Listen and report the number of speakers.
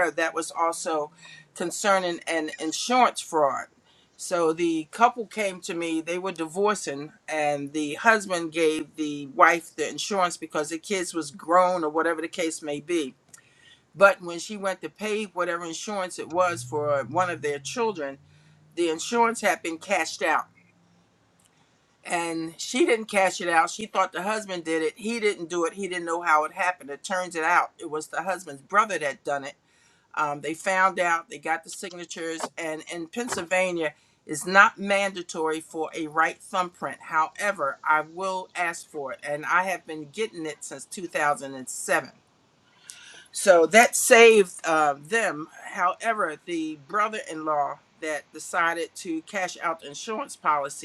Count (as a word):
one